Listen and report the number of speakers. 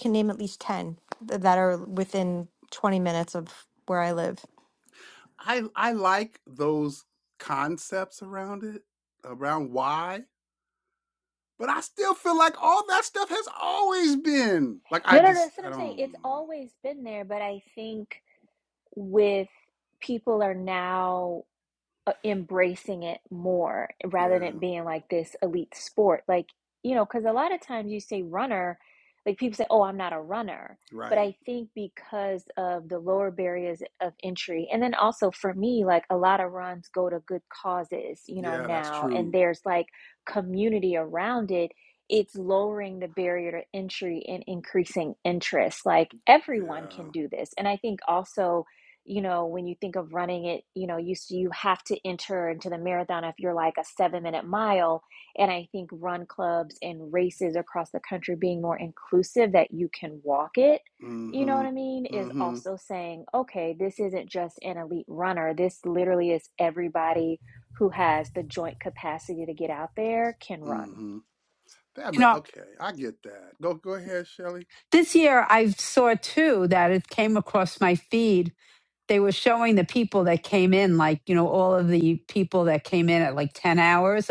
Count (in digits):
4